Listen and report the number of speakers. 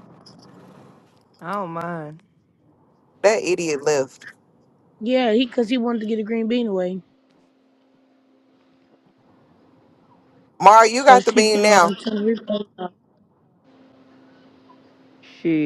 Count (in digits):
3